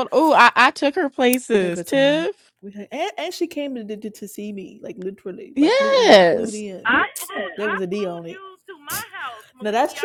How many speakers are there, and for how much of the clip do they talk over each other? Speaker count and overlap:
3, about 29%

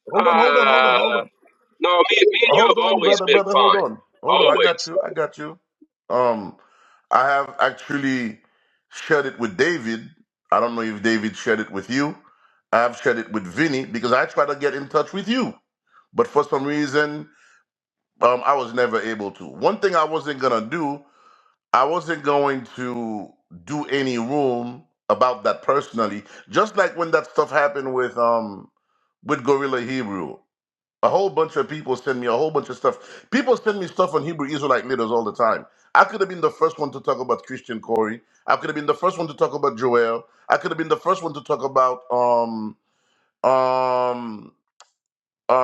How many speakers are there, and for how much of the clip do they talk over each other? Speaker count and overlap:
2, about 6%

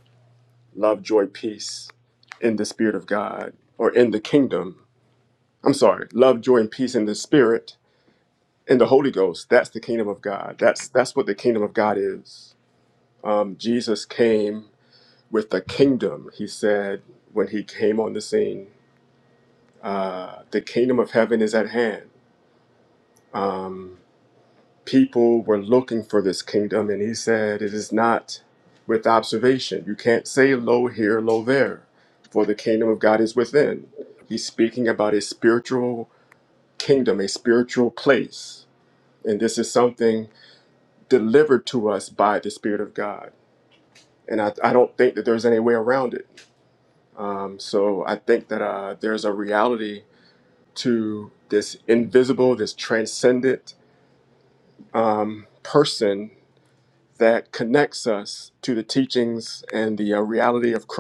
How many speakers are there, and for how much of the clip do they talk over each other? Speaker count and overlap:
1, no overlap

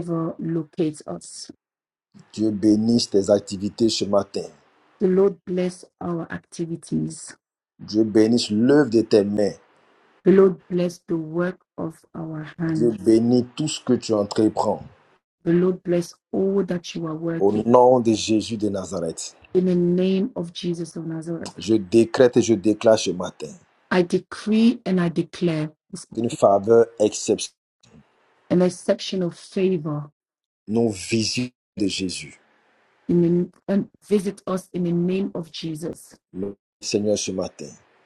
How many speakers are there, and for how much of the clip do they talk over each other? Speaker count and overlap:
2, about 1%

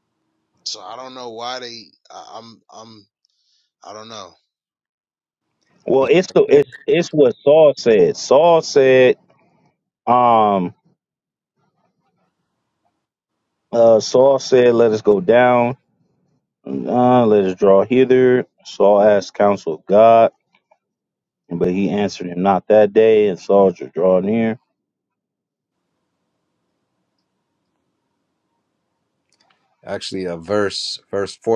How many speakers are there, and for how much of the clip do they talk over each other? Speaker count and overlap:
3, under 1%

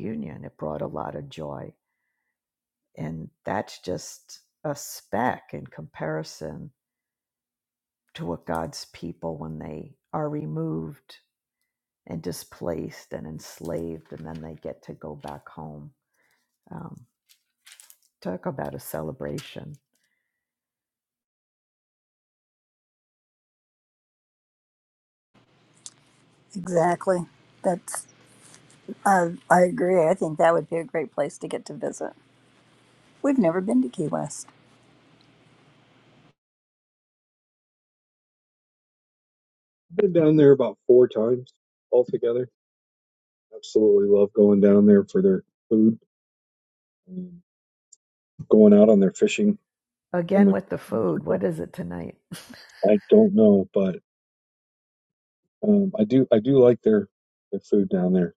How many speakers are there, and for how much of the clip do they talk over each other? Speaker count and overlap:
3, under 1%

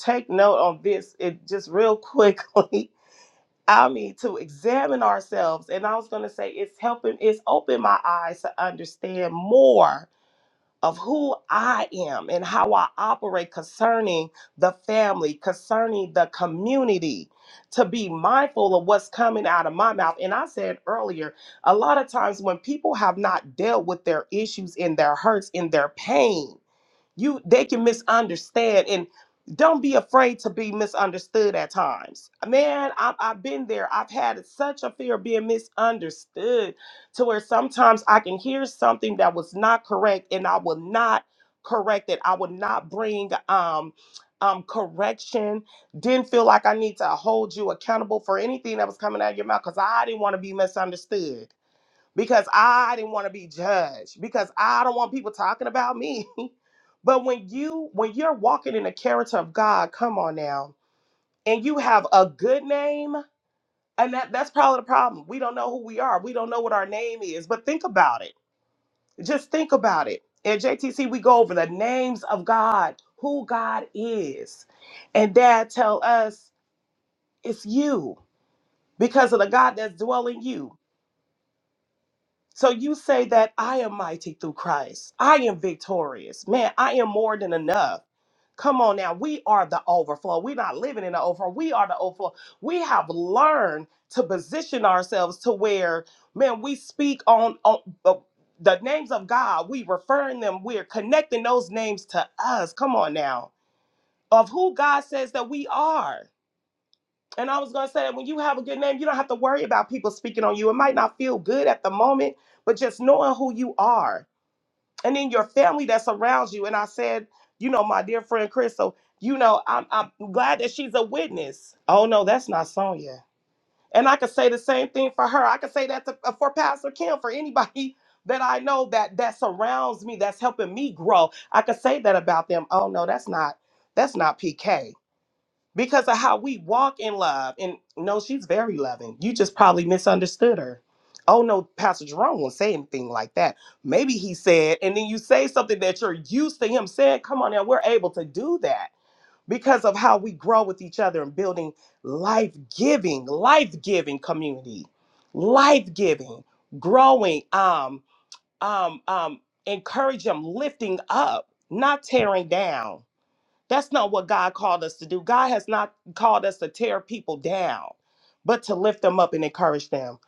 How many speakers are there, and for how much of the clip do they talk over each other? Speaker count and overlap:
1, no overlap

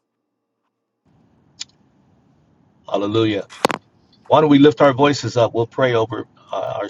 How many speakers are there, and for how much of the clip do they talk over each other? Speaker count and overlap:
1, no overlap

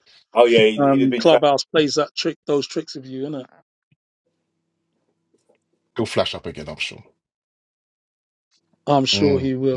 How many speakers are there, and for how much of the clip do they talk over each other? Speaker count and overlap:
3, about 13%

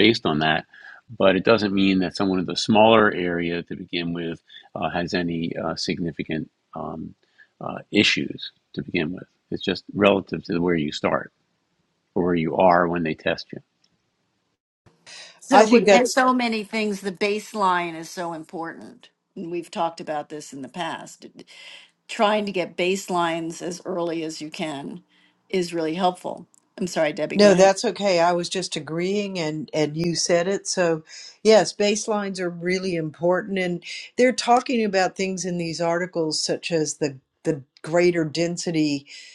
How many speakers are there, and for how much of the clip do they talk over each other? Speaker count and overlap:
3, about 2%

